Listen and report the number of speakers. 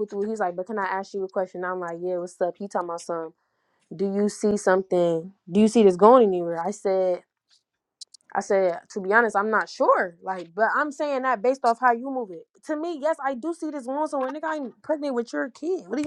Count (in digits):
1